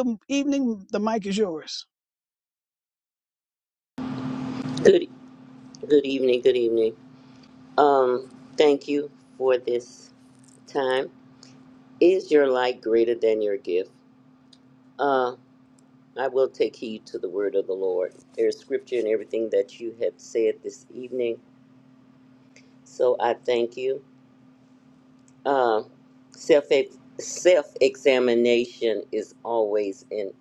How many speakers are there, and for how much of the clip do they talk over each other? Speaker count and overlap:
2, no overlap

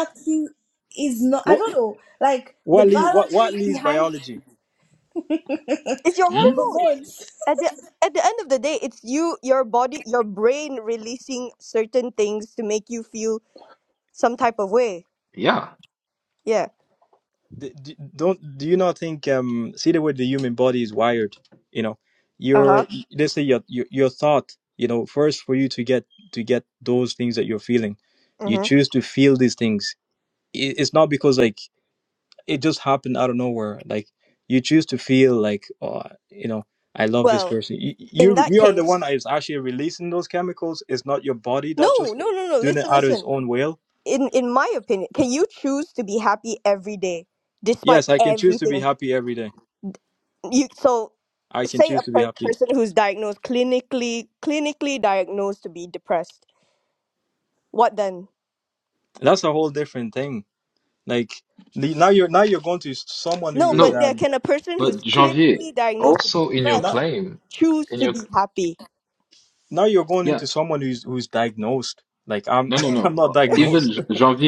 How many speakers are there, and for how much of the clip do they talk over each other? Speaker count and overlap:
4, about 15%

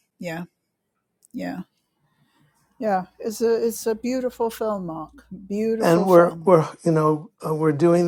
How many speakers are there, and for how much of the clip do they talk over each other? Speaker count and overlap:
2, about 8%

